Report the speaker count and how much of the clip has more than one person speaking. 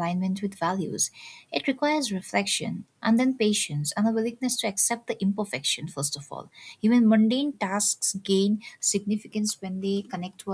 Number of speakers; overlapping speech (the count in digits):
1, no overlap